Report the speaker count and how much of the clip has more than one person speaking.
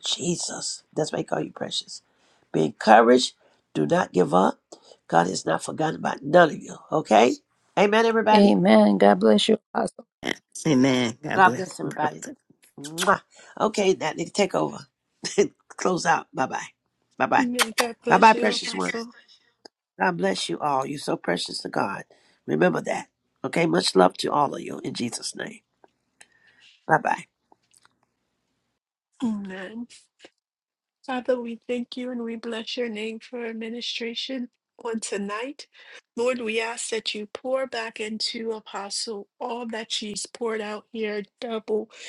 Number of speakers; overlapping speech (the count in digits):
4, about 5%